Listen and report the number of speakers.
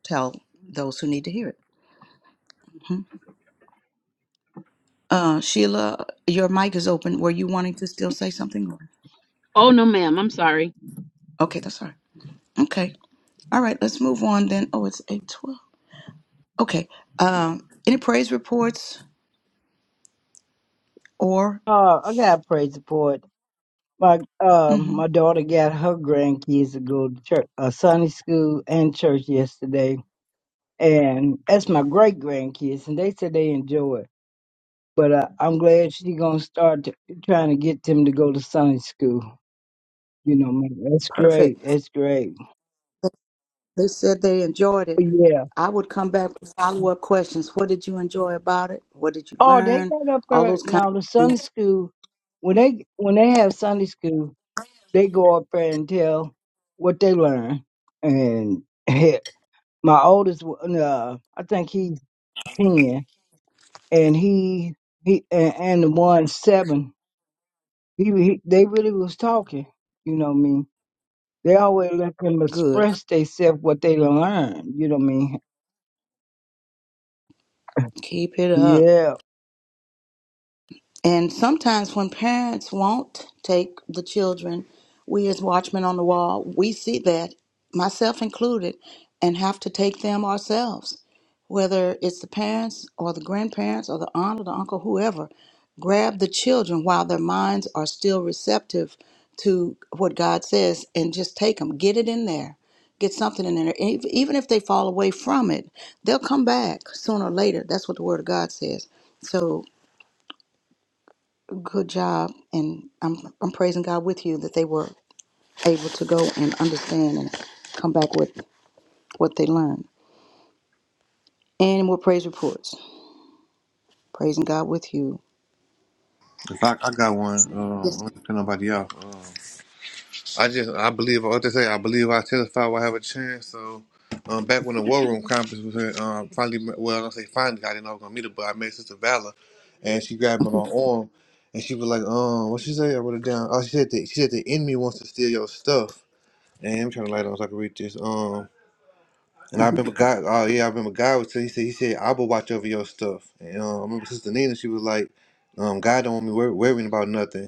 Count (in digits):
4